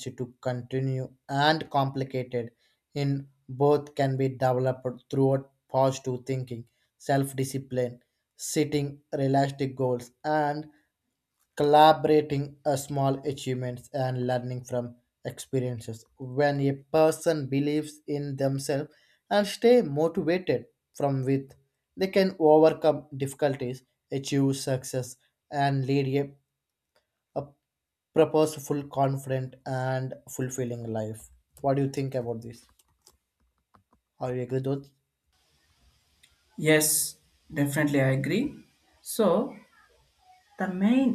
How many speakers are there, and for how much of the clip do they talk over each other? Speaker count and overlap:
2, no overlap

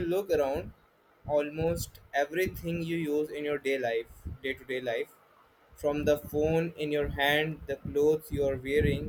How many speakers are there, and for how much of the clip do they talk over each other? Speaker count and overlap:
1, no overlap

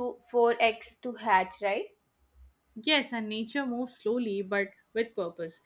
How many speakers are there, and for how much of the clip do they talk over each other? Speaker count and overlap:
2, no overlap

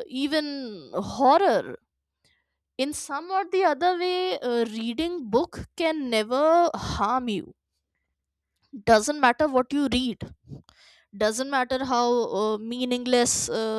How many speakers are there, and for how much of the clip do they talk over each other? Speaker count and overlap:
1, no overlap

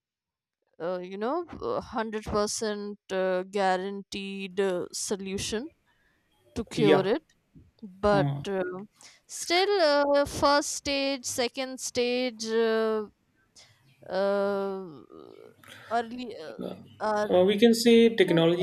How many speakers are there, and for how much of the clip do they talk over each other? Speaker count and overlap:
2, about 6%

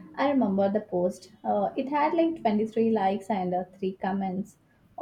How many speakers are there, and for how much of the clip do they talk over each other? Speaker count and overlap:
1, no overlap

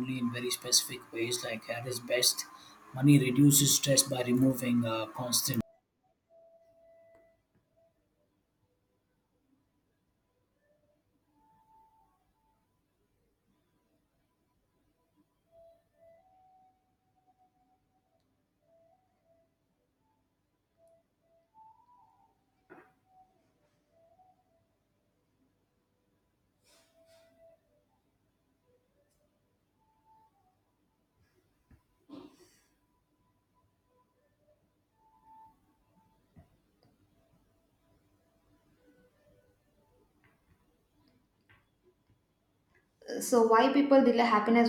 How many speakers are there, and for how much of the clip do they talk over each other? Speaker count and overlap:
2, no overlap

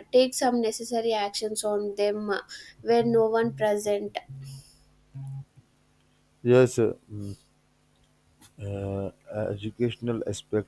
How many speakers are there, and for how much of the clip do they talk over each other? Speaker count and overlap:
2, no overlap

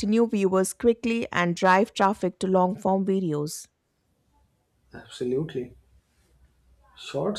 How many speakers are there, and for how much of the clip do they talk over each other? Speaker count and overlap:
2, no overlap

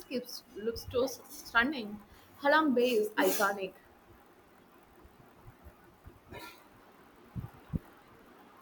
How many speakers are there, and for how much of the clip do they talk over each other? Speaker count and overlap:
1, no overlap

